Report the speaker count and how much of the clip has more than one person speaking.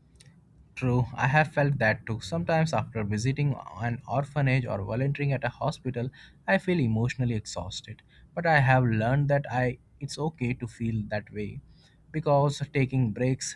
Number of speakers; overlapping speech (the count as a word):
one, no overlap